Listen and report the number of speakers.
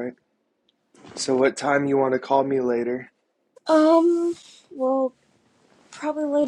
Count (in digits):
2